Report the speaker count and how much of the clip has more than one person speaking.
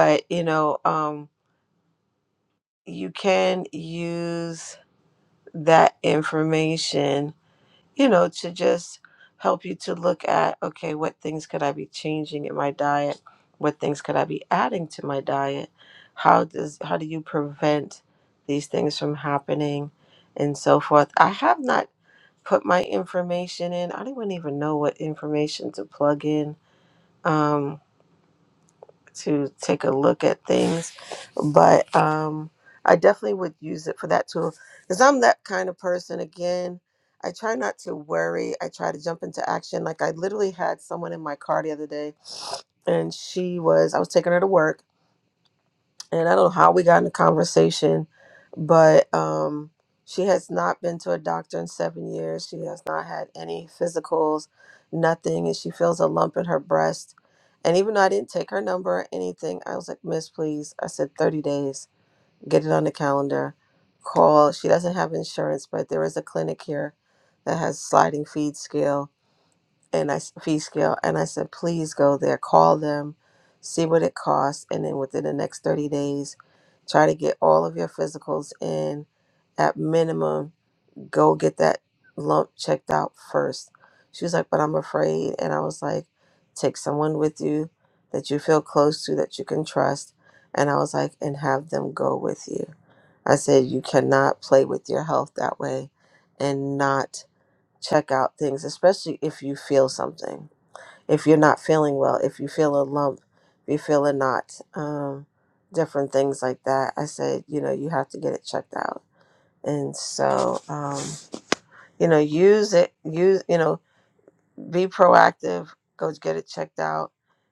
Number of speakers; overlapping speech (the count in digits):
1, no overlap